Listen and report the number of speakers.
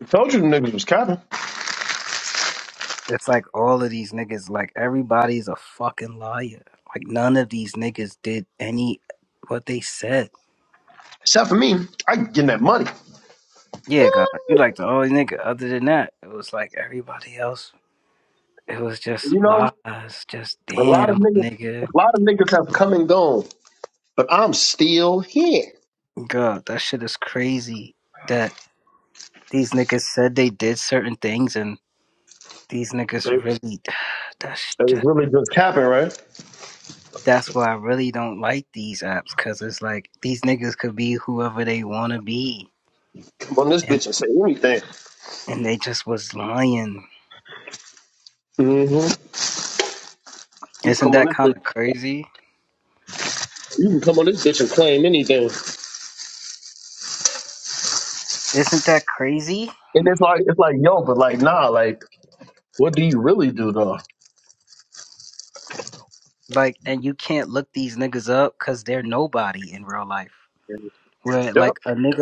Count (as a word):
two